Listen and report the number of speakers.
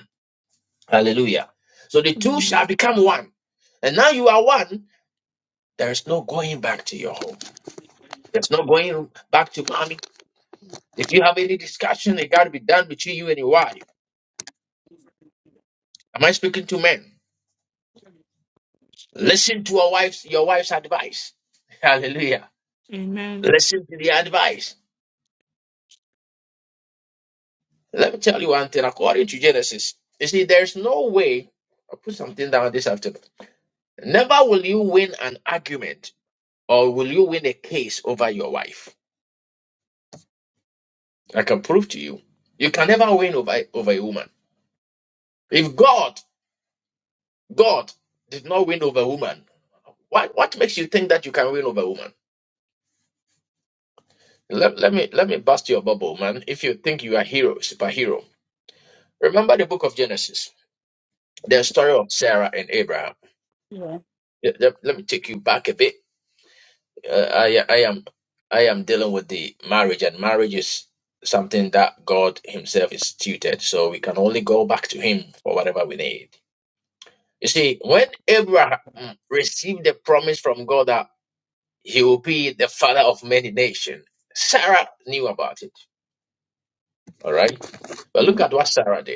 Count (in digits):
2